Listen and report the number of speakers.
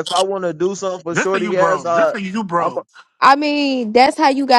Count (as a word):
three